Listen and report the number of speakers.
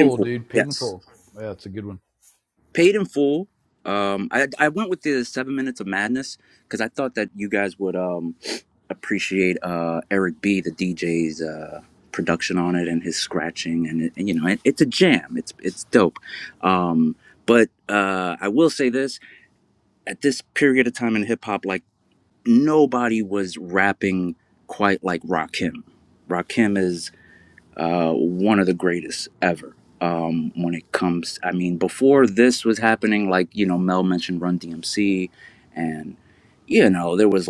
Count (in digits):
2